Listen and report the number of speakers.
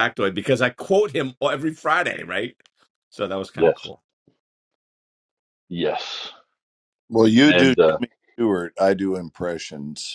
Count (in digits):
3